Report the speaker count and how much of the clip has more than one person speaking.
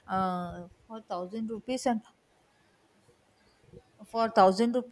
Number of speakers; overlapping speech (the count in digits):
1, no overlap